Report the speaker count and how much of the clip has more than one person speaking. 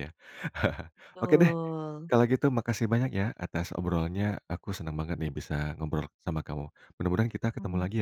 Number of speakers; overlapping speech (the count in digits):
2, about 6%